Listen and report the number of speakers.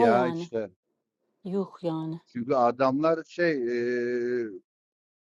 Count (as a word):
two